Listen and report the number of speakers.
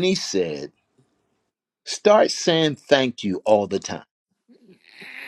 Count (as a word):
one